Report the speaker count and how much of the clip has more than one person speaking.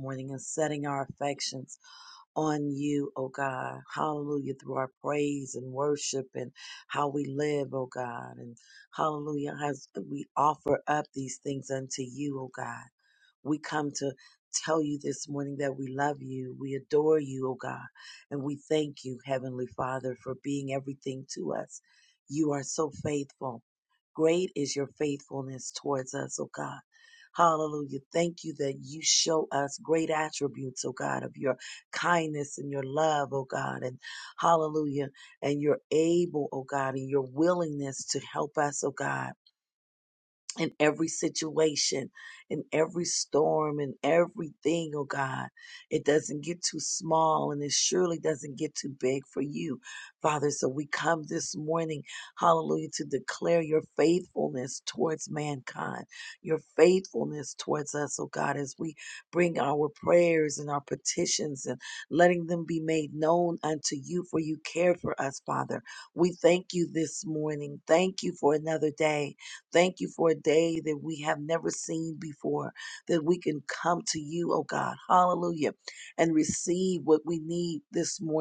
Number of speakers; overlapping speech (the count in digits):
1, no overlap